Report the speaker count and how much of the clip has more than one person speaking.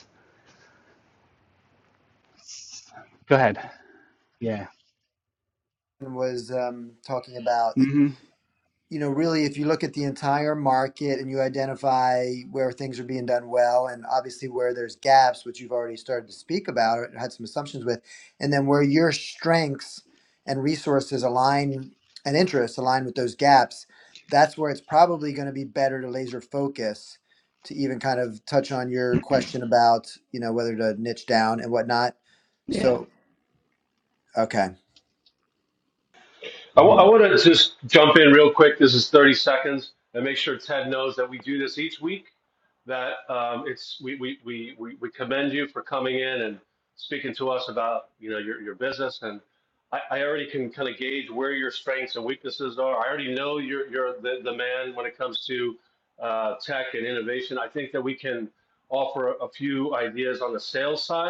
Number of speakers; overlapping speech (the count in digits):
3, about 1%